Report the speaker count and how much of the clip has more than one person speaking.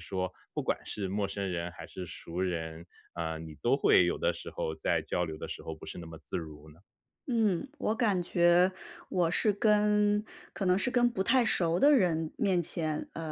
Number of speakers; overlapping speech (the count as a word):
two, no overlap